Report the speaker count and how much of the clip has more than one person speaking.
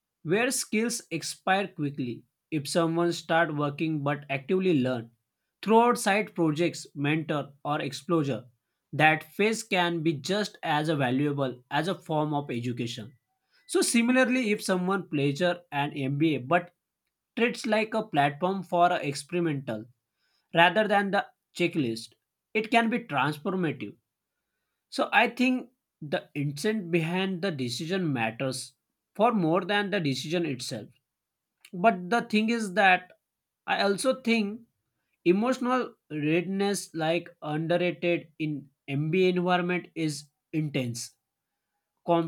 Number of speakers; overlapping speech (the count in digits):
1, no overlap